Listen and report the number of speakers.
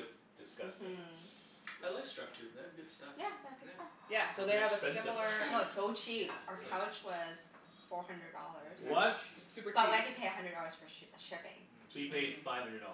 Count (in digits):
4